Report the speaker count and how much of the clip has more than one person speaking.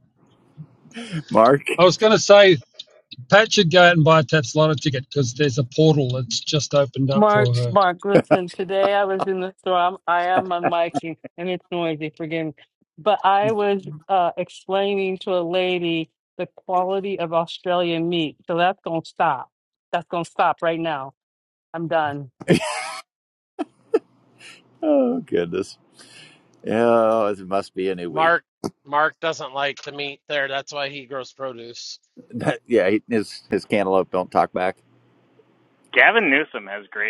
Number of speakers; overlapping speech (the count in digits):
5, about 2%